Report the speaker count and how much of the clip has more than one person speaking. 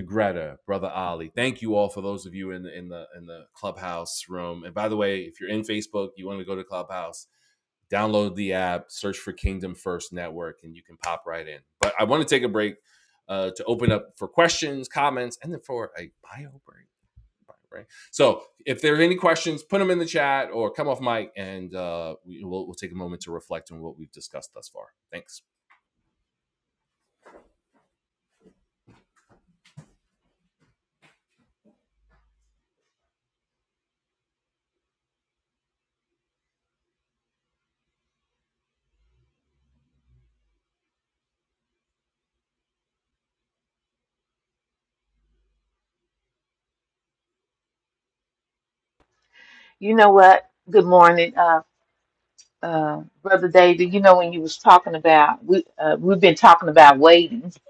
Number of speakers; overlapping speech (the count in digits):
2, no overlap